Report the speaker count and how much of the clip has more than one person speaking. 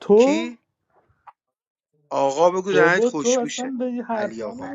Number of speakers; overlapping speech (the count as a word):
two, about 40%